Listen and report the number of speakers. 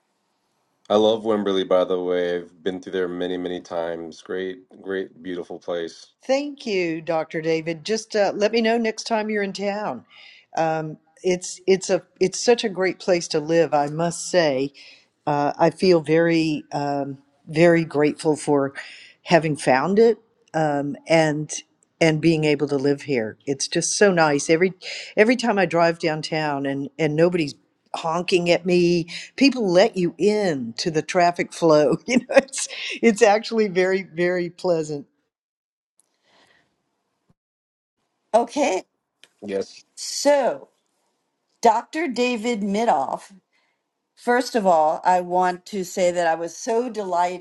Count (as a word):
three